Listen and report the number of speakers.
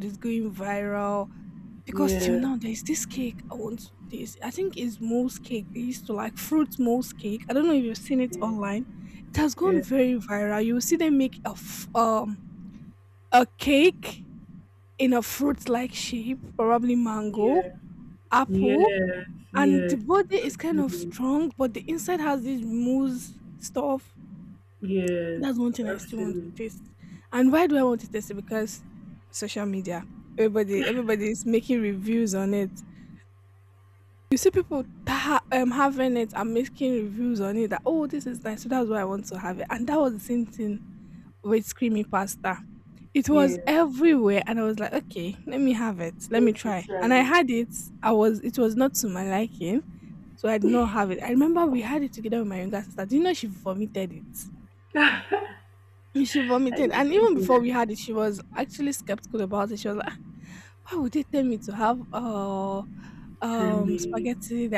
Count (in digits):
2